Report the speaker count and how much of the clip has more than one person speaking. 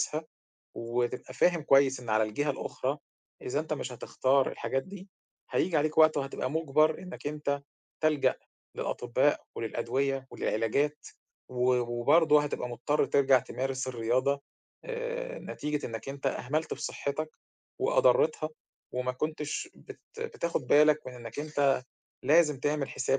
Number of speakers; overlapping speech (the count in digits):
1, no overlap